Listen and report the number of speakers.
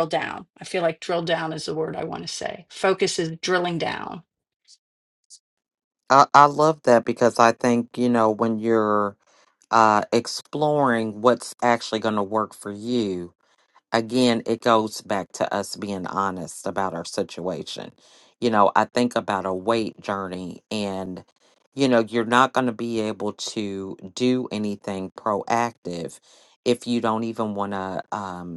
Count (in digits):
2